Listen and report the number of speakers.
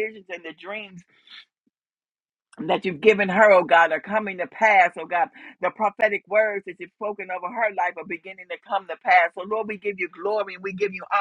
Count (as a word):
one